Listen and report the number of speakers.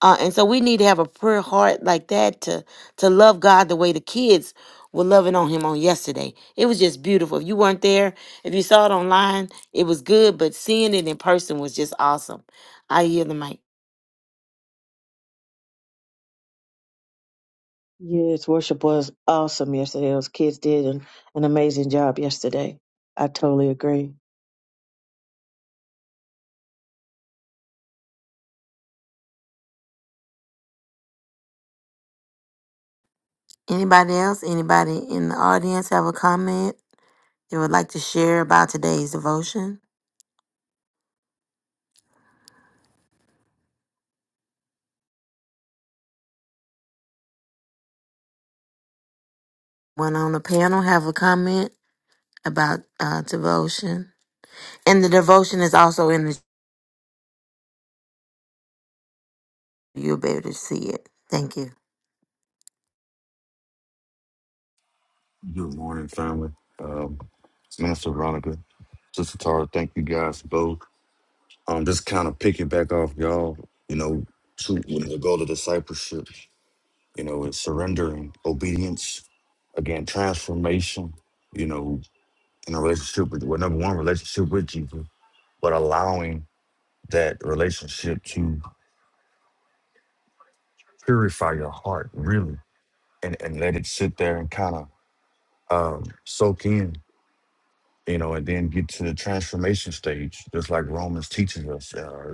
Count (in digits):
3